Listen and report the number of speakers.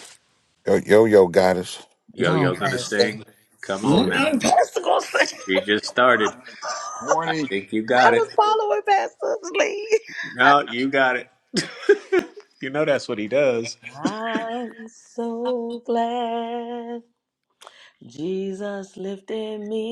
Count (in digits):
3